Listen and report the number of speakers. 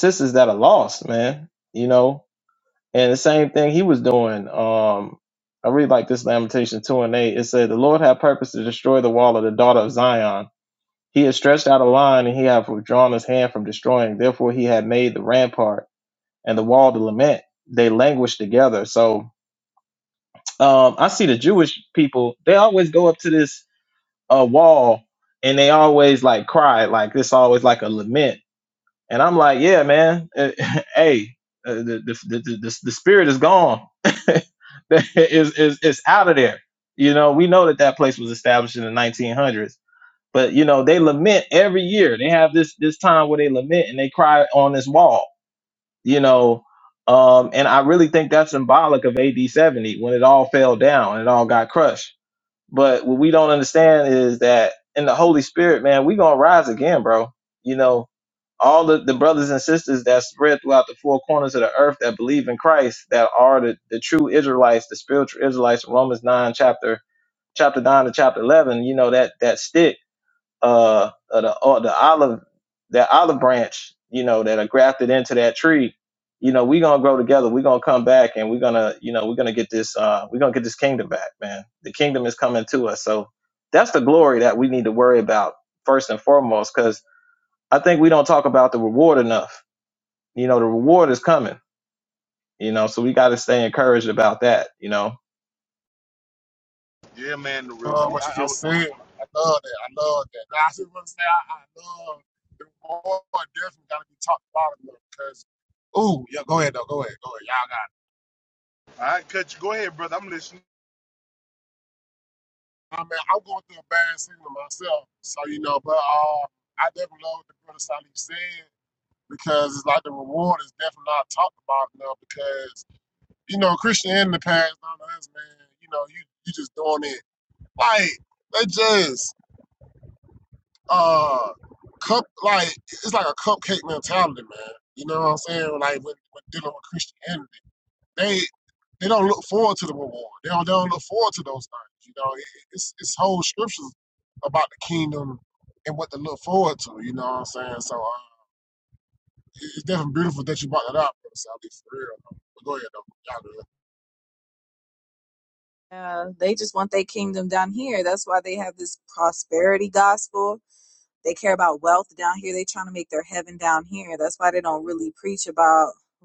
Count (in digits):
4